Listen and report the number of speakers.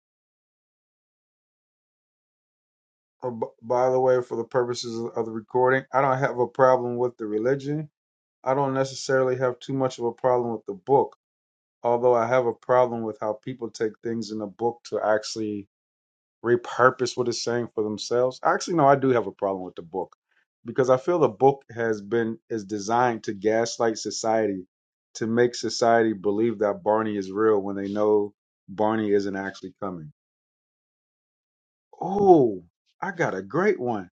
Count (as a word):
one